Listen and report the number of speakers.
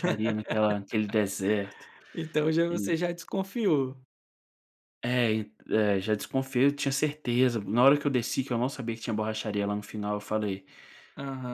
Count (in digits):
2